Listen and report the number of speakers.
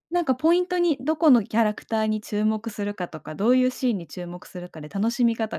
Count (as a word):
one